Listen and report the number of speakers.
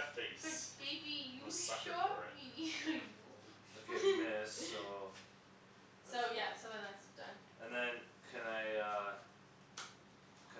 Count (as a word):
three